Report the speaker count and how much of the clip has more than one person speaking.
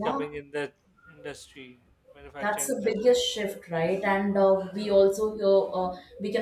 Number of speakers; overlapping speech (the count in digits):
2, about 16%